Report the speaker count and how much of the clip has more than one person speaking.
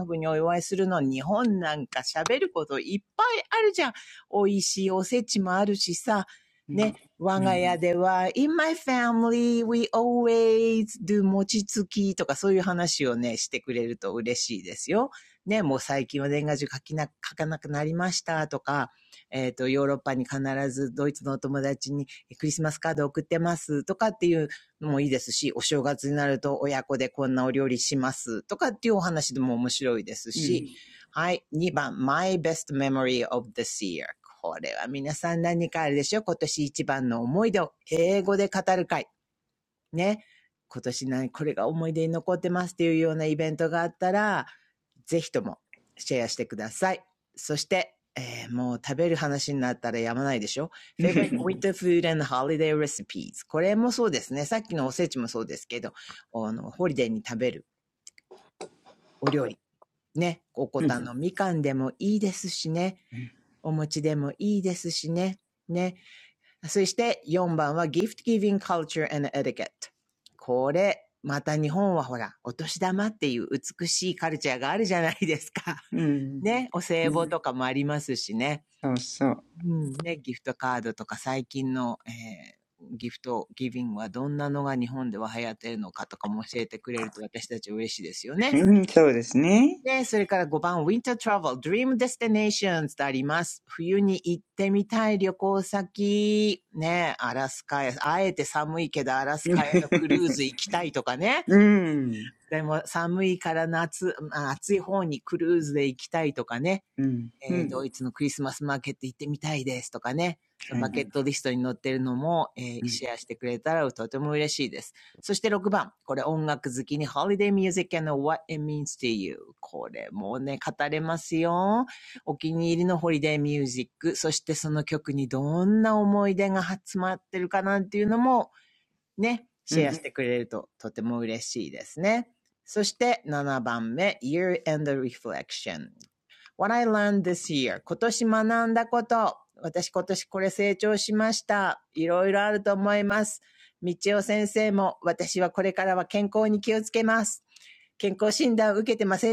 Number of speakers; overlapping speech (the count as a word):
two, about 1%